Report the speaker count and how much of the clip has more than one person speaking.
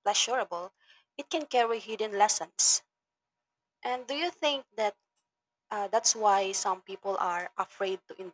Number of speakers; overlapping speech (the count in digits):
1, no overlap